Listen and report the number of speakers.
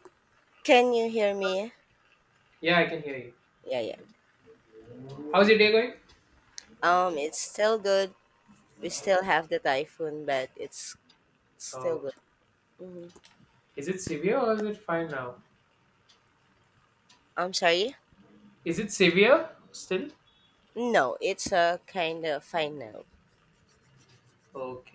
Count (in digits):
2